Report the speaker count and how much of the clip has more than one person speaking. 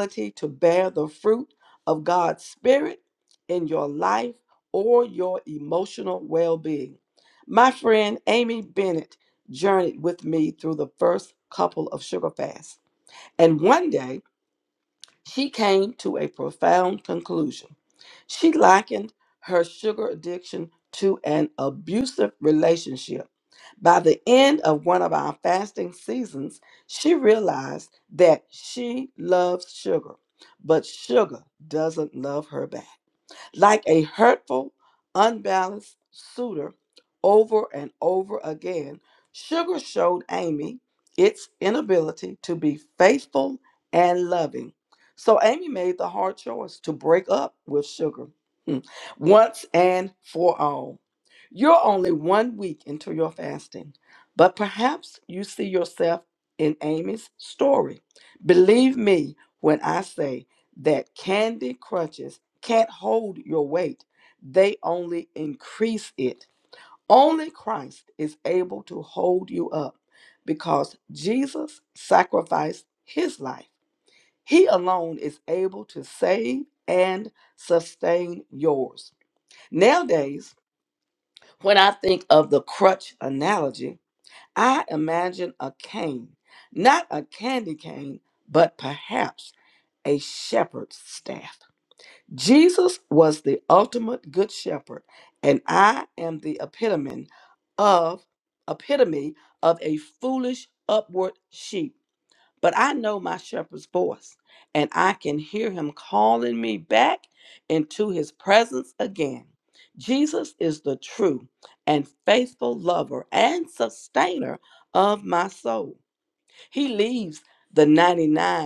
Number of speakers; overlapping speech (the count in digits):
1, no overlap